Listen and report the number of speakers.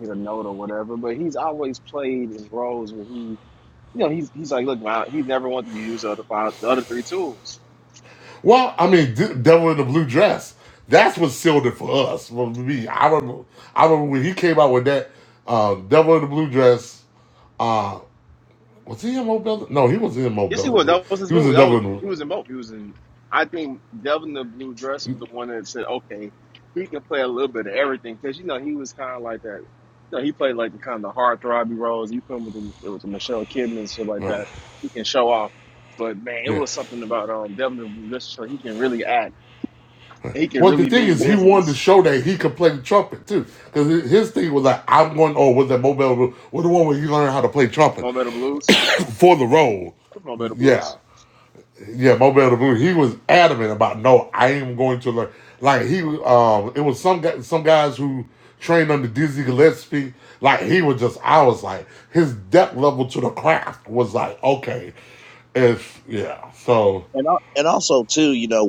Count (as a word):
three